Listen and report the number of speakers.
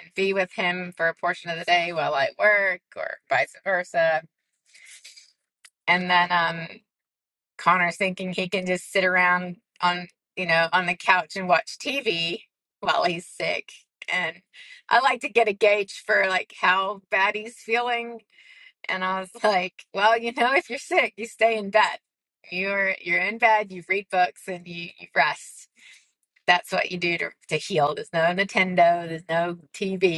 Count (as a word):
one